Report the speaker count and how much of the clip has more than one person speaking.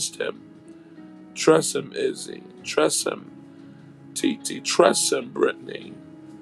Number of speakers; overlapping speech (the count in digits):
1, no overlap